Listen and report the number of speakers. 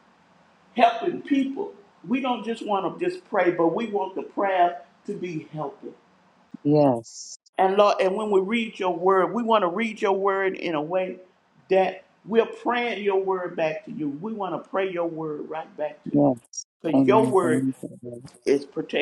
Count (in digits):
2